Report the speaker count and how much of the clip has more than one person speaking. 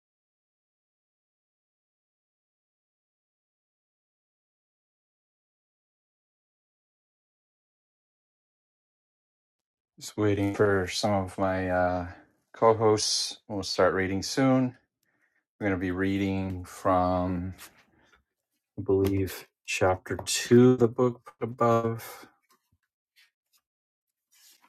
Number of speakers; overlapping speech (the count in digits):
1, no overlap